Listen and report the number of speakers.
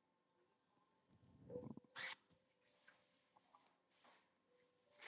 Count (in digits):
0